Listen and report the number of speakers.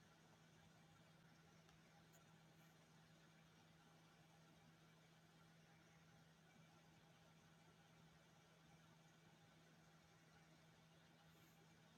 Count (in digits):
0